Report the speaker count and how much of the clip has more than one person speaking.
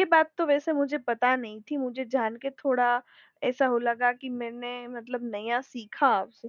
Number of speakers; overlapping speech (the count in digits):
1, no overlap